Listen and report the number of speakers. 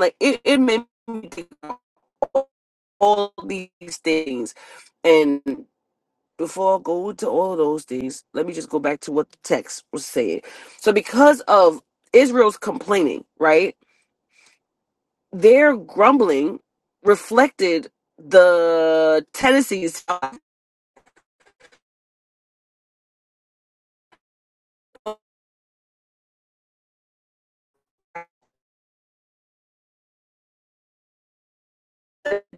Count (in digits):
1